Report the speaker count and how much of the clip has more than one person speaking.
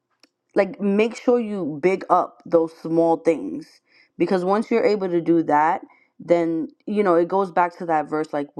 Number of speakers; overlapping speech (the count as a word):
one, no overlap